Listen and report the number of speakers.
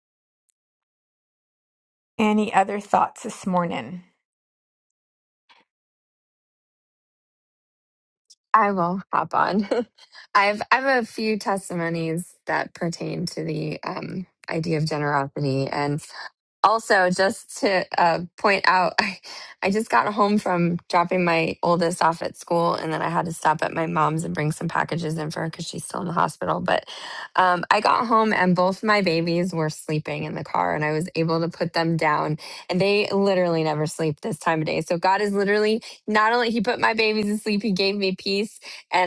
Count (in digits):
2